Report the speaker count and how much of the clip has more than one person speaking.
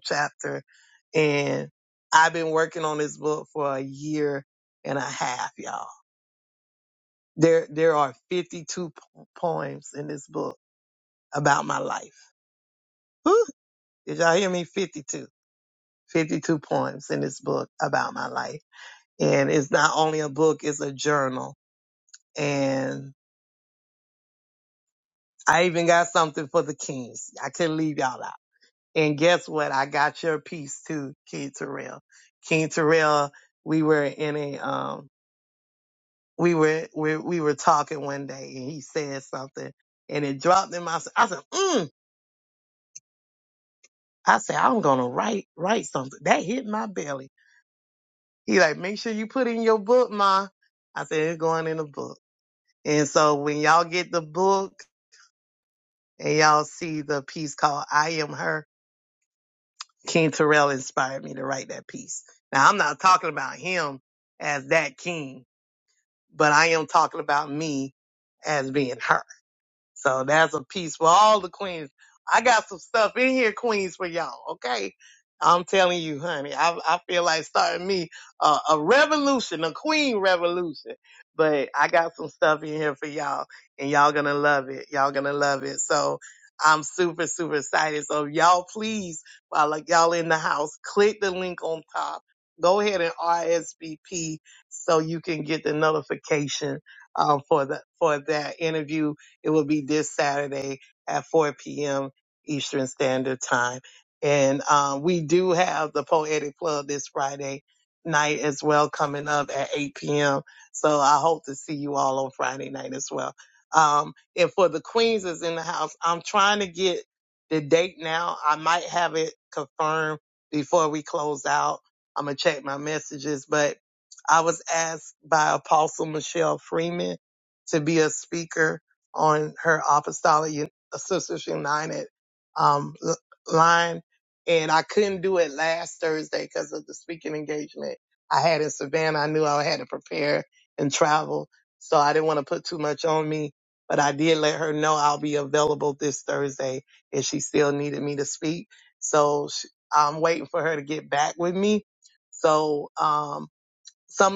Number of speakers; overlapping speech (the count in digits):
1, no overlap